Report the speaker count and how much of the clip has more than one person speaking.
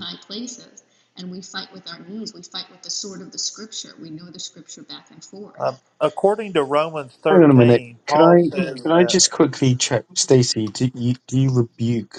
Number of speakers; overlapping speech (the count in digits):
3, about 16%